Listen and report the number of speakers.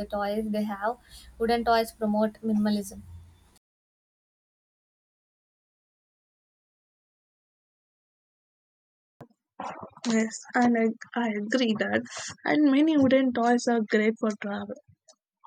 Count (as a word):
two